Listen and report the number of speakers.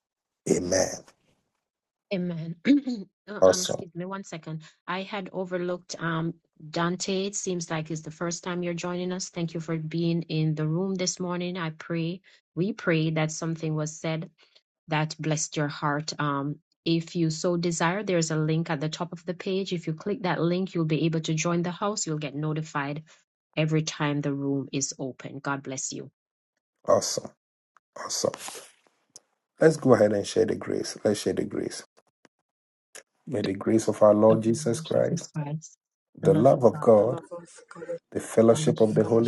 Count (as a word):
three